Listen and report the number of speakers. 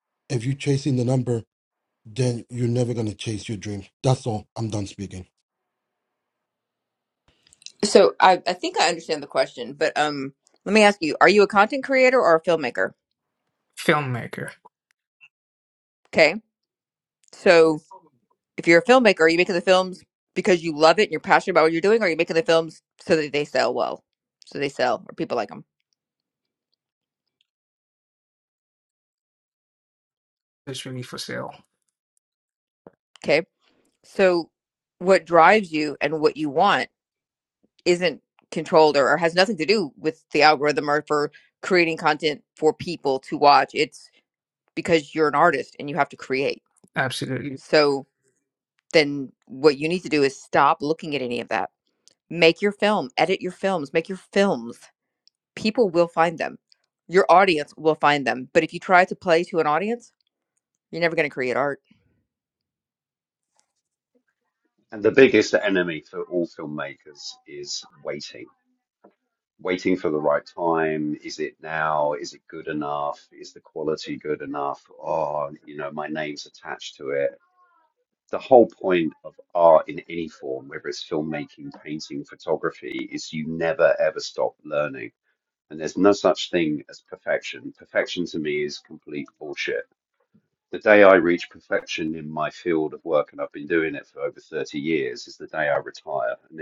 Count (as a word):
four